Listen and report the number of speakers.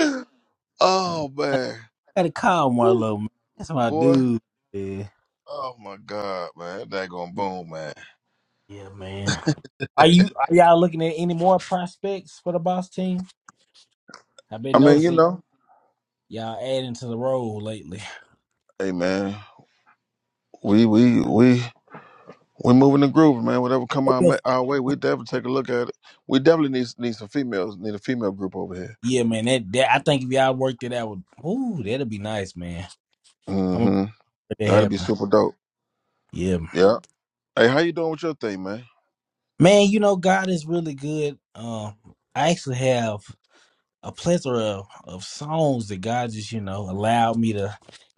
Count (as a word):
two